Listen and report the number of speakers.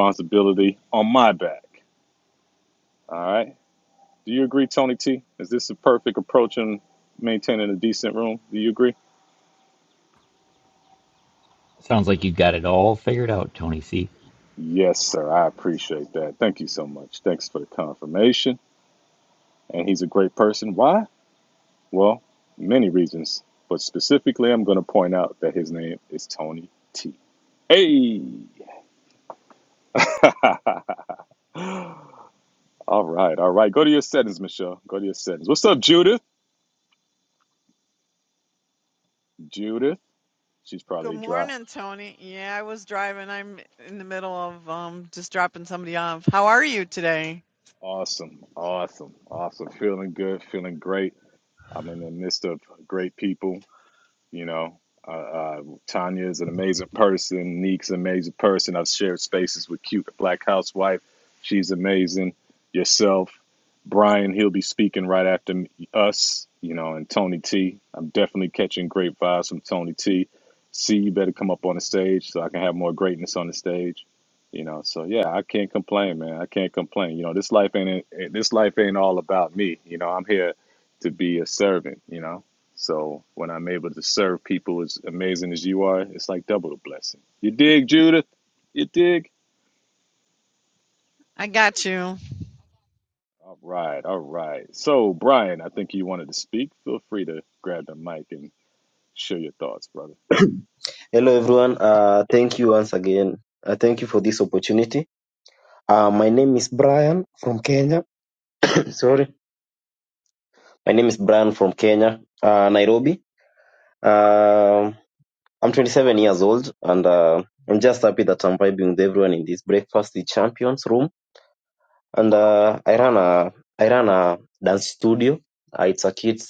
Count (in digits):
4